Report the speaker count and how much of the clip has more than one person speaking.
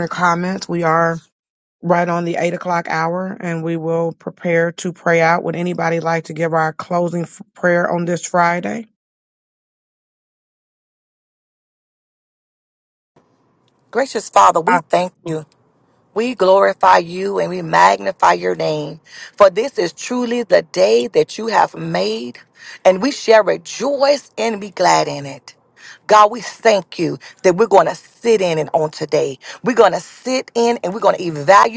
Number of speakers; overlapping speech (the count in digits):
2, about 1%